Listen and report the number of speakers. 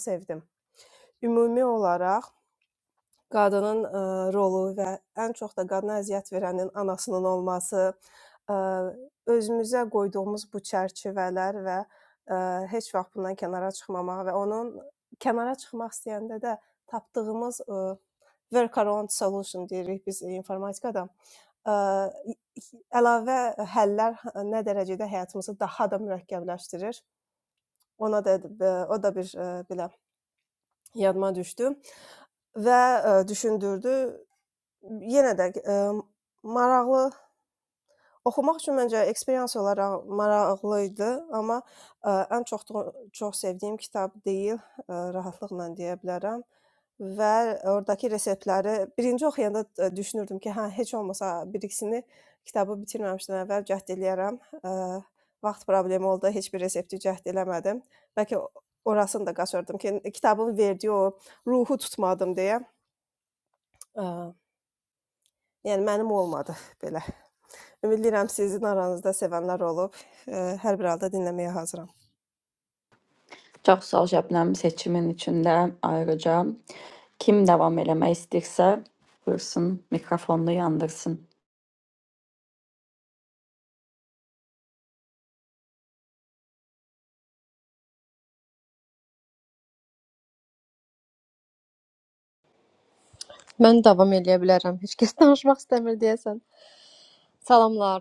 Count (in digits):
3